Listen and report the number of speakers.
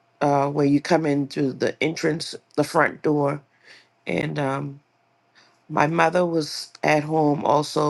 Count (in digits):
1